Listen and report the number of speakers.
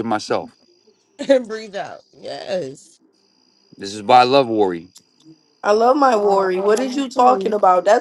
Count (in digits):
3